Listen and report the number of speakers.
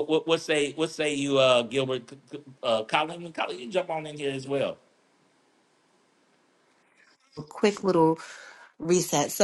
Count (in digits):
2